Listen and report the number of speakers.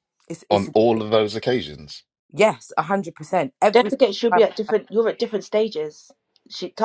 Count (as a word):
three